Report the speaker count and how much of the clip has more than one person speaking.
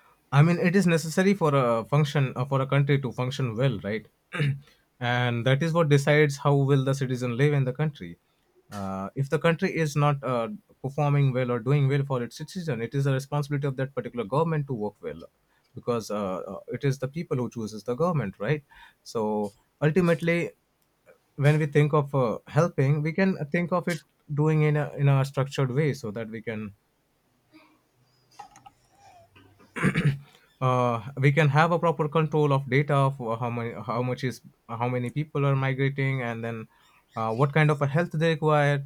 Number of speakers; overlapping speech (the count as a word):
one, no overlap